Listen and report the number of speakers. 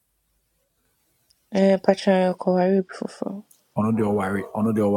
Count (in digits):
2